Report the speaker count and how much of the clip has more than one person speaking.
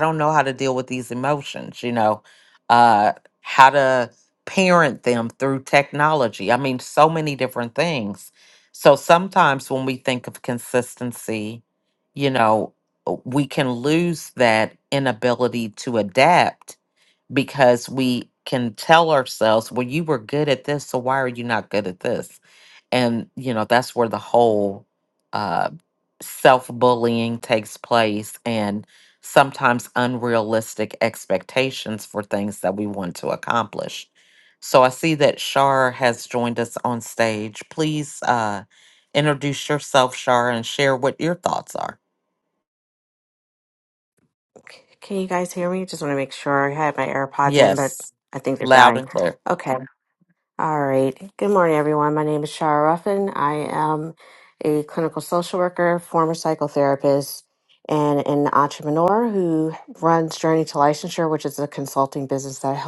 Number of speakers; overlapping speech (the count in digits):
2, about 1%